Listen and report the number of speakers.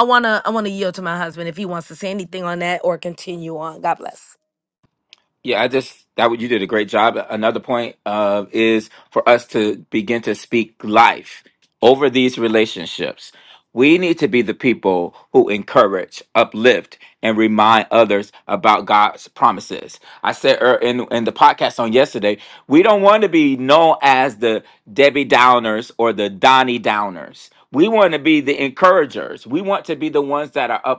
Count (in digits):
2